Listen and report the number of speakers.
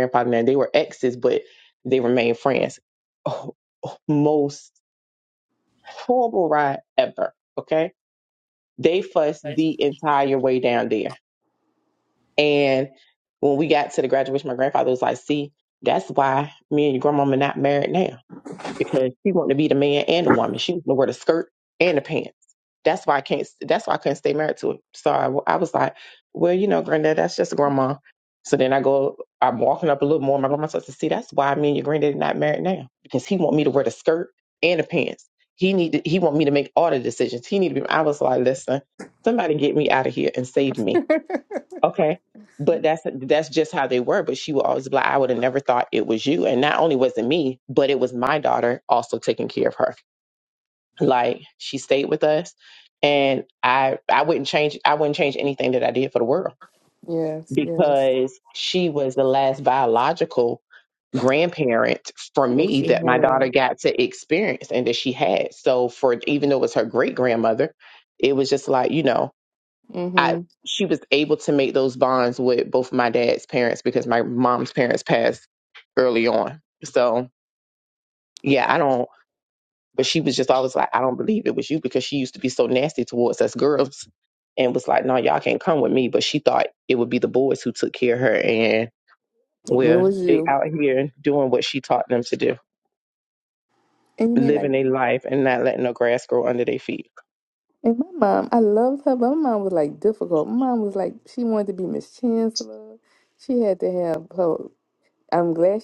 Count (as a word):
two